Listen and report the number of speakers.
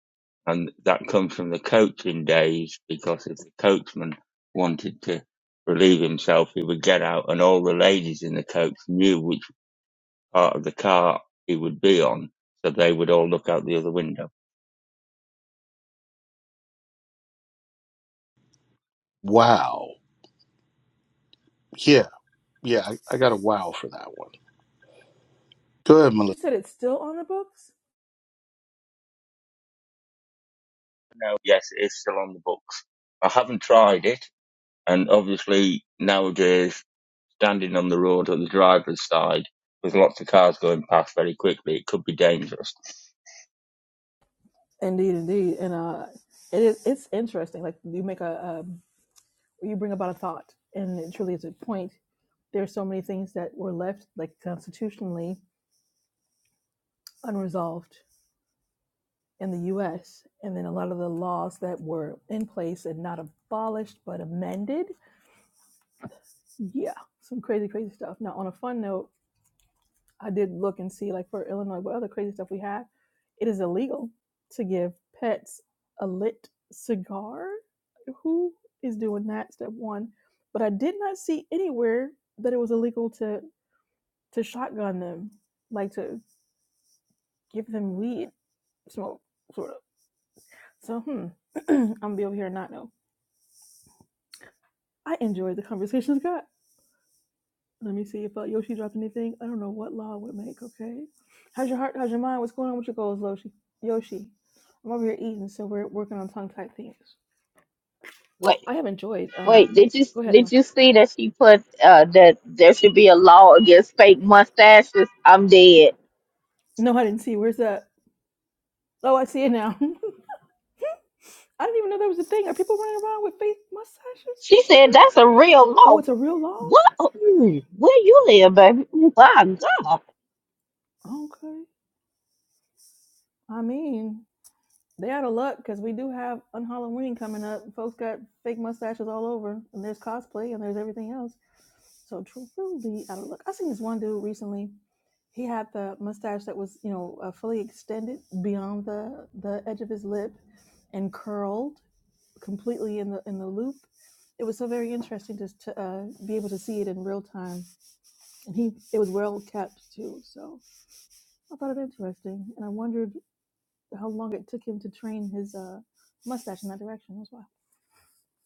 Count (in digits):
4